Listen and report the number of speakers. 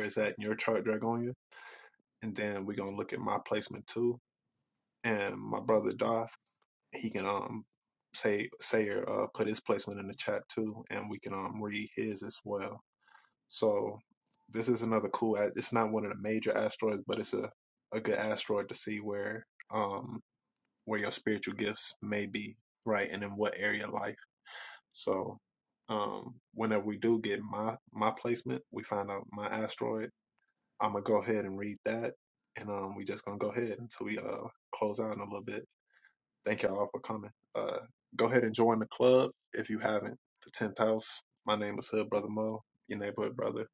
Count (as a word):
one